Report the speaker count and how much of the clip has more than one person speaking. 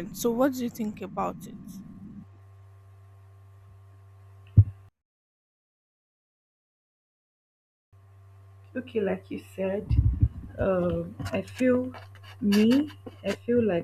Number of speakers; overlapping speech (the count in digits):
2, no overlap